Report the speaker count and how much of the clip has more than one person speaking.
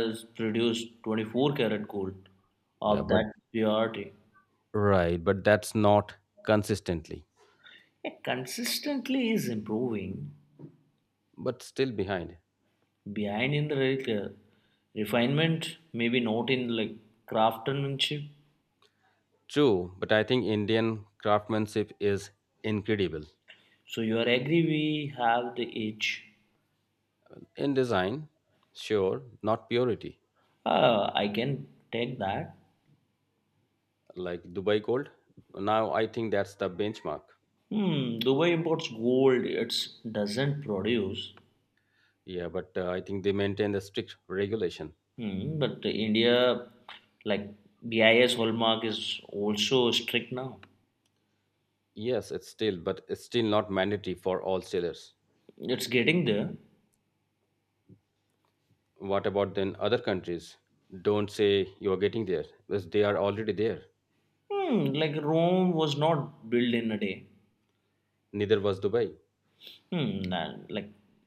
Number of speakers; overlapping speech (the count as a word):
two, about 1%